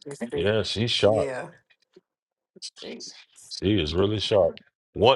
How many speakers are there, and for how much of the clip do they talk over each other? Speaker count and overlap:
2, about 8%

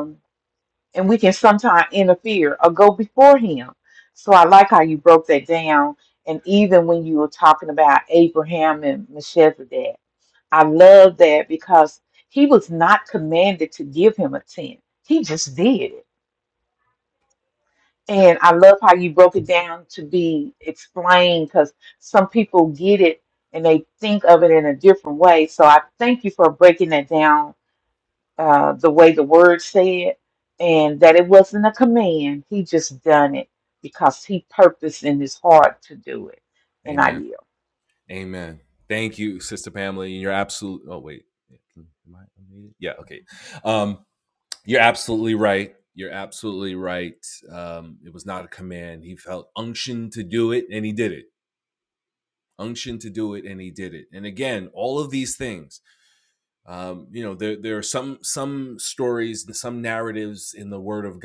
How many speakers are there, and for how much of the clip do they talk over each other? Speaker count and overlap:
2, about 1%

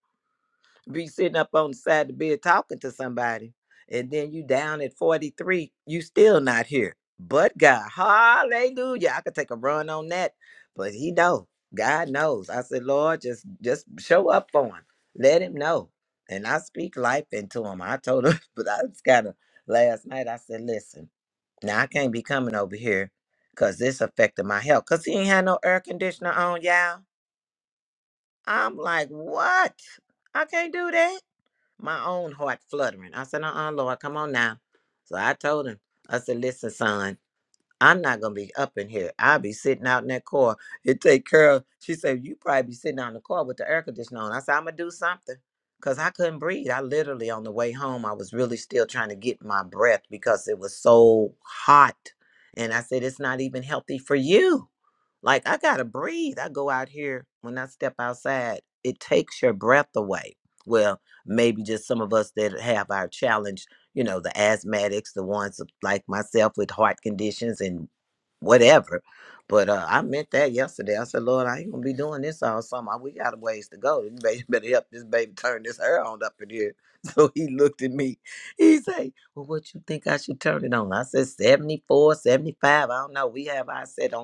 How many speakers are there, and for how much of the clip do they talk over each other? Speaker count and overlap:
1, no overlap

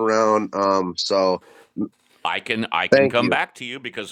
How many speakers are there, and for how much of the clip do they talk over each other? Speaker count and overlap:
2, about 11%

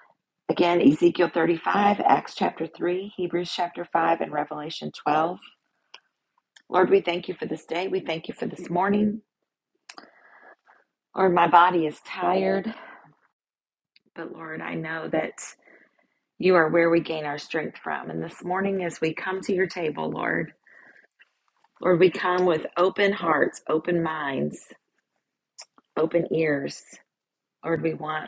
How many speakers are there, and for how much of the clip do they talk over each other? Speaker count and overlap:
1, no overlap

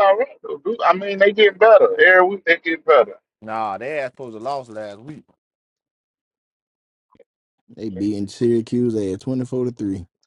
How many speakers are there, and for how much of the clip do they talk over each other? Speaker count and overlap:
3, no overlap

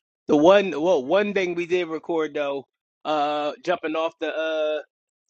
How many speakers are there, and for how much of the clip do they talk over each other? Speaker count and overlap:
1, no overlap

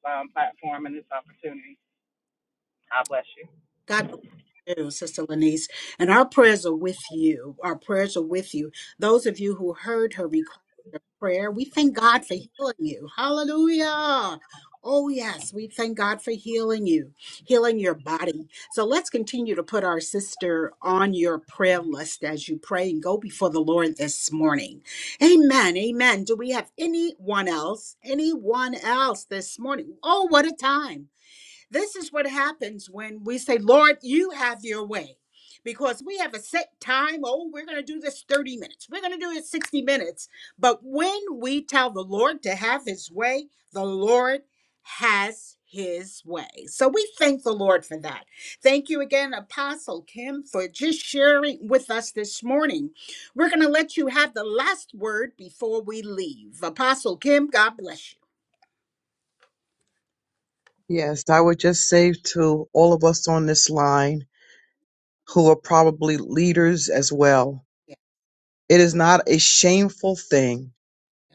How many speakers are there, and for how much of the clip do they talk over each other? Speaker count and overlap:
3, no overlap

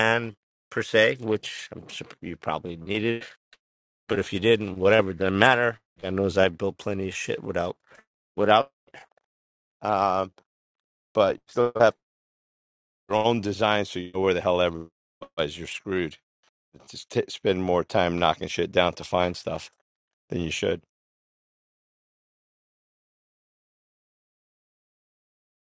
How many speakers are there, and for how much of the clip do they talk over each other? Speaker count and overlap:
1, no overlap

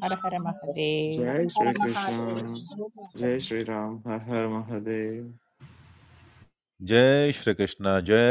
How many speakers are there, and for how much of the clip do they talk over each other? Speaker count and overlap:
4, about 13%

